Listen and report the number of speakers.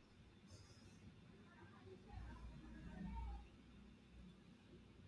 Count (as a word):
zero